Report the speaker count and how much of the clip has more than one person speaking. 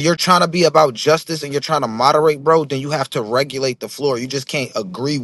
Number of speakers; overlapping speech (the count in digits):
1, no overlap